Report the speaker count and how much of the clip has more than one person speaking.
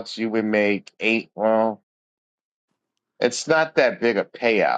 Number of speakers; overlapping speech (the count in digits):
1, no overlap